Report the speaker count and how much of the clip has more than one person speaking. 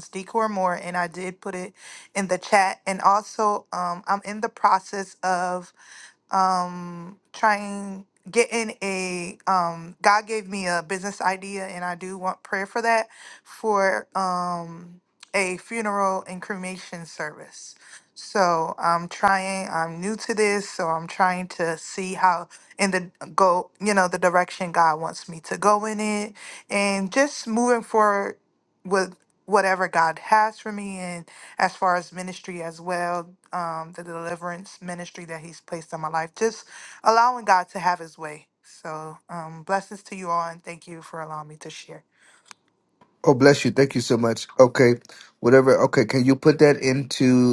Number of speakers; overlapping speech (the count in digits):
2, no overlap